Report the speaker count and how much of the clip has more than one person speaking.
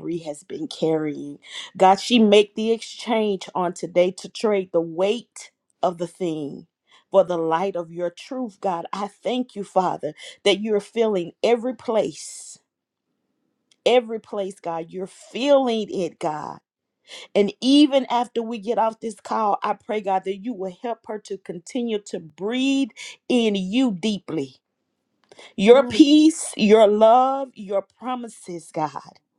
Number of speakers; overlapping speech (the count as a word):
one, no overlap